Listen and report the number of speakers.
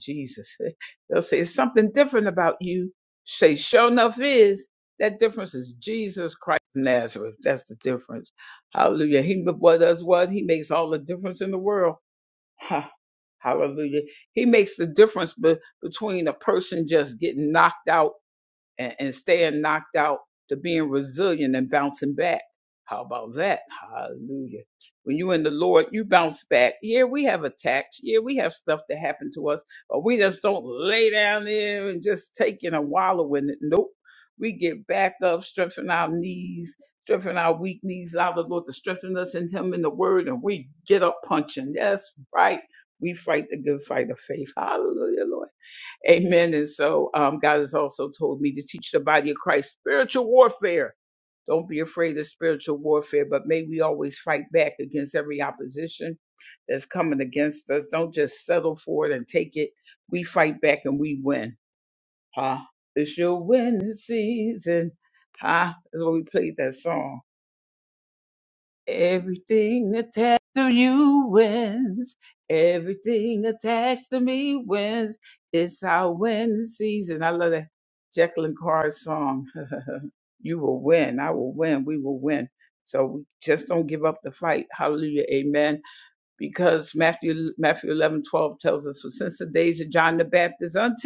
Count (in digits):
1